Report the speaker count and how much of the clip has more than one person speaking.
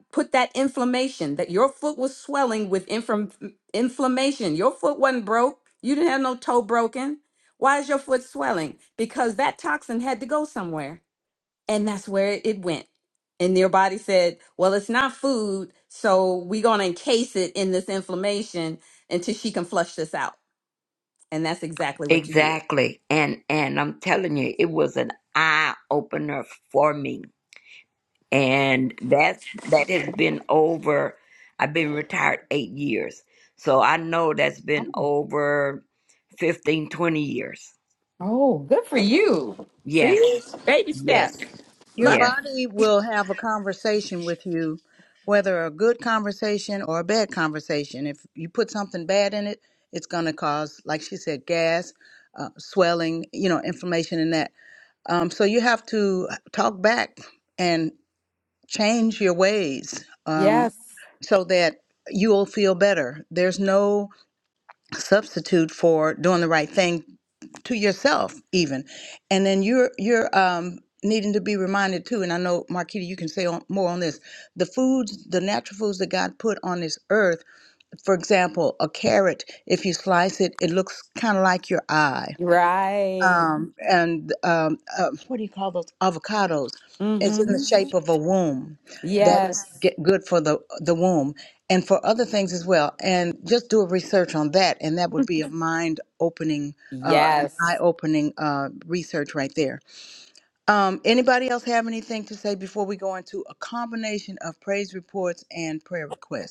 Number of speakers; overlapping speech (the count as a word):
three, about 3%